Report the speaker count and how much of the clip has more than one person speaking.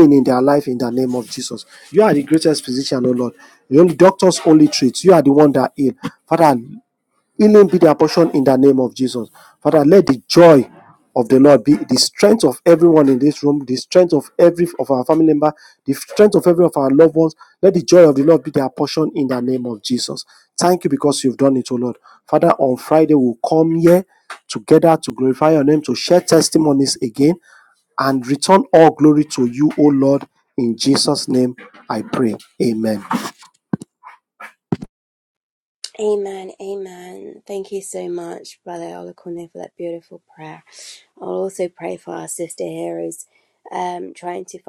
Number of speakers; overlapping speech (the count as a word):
two, no overlap